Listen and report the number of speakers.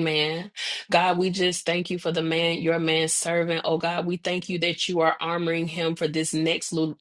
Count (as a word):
one